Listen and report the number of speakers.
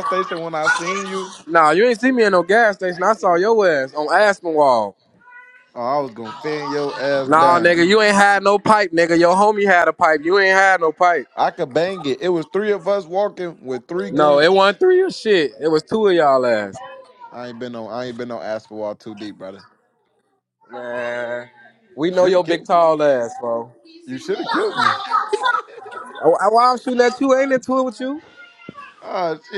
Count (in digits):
2